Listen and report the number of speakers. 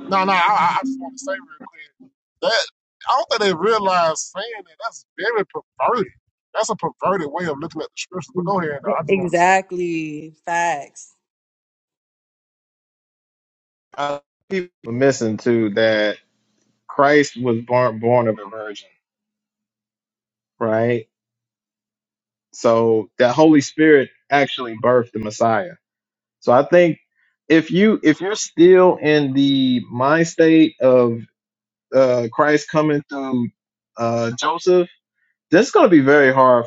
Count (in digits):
3